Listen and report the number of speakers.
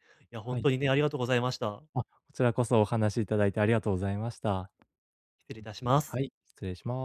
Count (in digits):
2